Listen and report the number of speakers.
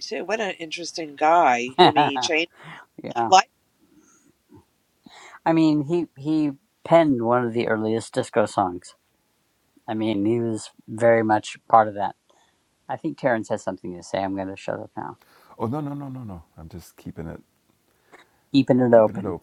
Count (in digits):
3